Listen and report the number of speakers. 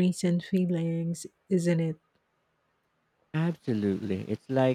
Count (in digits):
2